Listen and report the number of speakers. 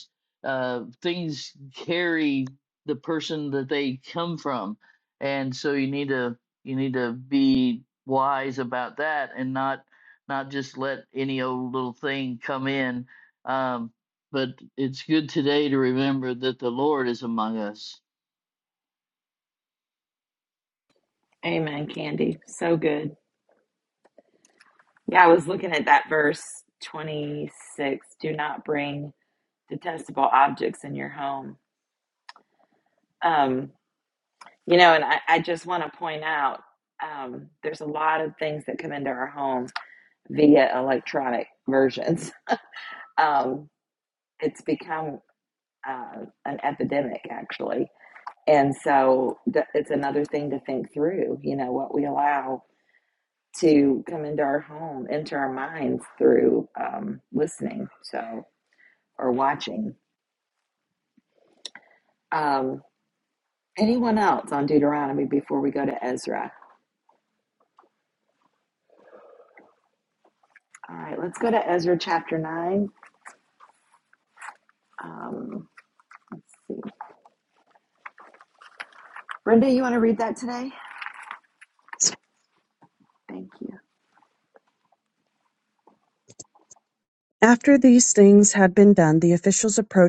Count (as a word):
three